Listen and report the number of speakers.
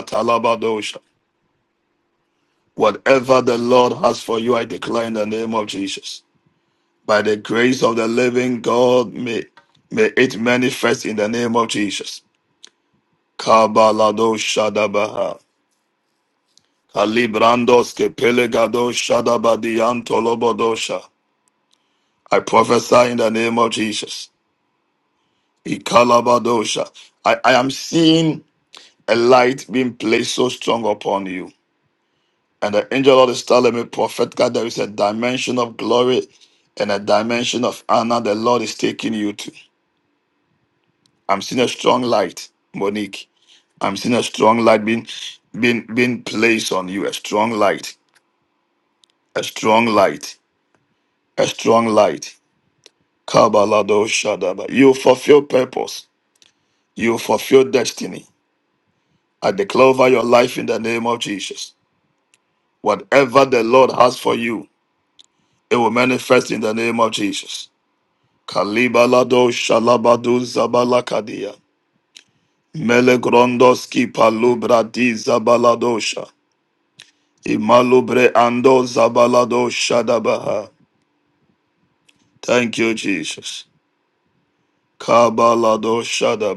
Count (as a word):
one